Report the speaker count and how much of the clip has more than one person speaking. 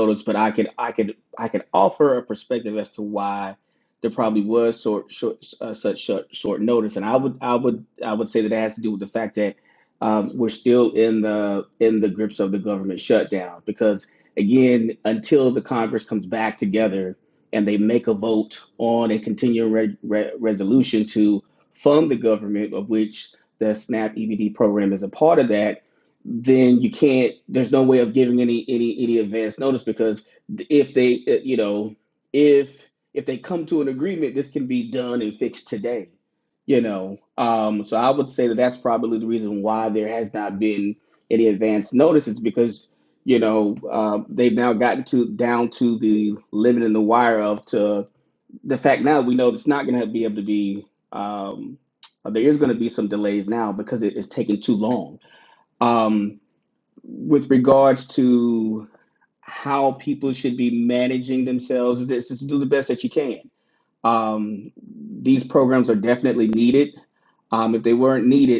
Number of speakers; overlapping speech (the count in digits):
1, no overlap